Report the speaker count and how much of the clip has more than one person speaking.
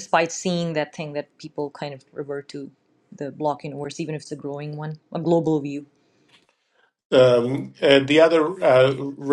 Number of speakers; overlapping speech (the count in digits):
2, no overlap